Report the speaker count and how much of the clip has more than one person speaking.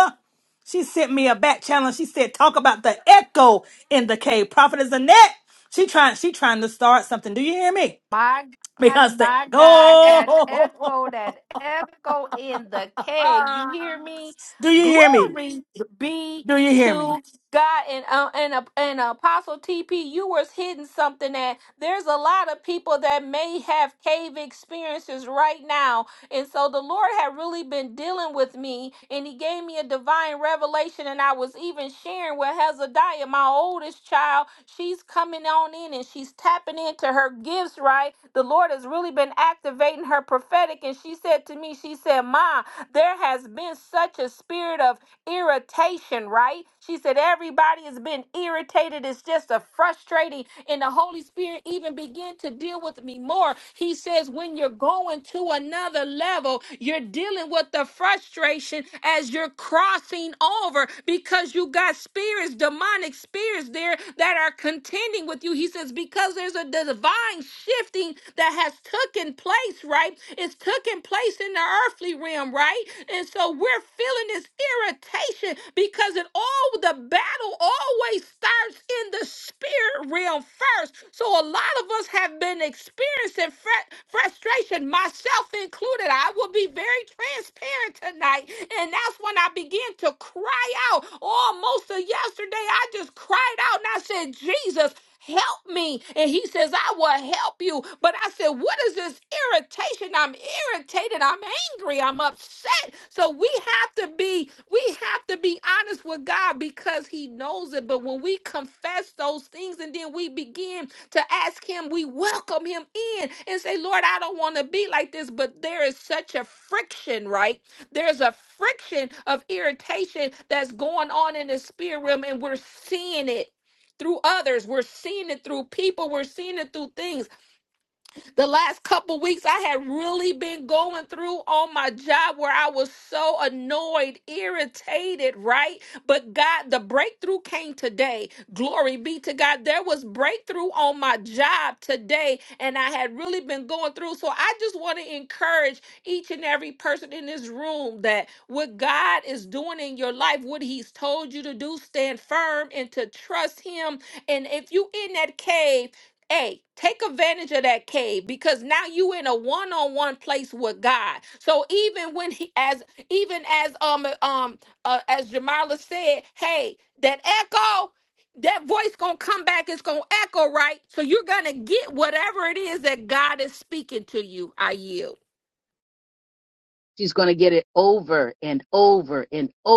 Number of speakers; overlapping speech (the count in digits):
3, about 1%